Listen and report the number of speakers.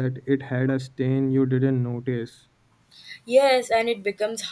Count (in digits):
2